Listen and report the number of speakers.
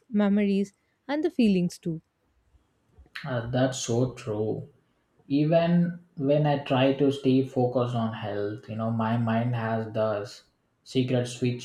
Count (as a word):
two